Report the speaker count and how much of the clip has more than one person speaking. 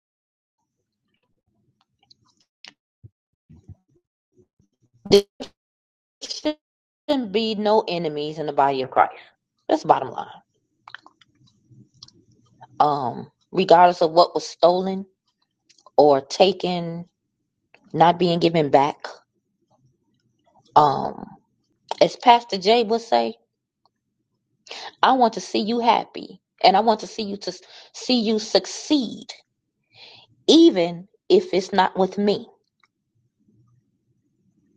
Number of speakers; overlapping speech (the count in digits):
1, no overlap